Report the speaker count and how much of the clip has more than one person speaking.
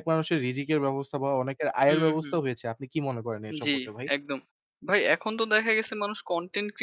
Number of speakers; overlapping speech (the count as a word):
two, about 10%